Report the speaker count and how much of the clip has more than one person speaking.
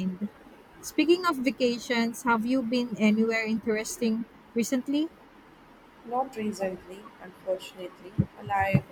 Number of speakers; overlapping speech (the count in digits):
2, no overlap